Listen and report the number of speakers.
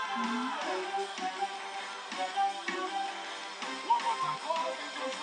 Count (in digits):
0